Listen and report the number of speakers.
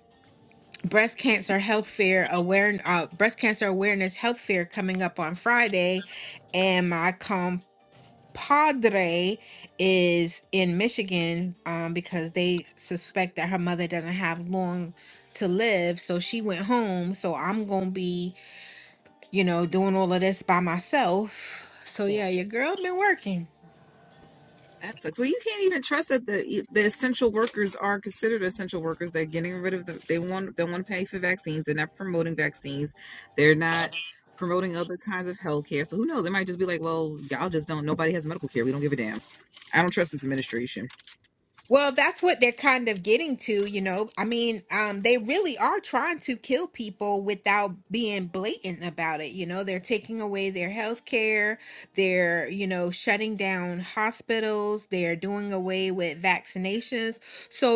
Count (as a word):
two